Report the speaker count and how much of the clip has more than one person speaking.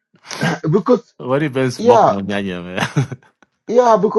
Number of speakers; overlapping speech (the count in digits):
2, about 9%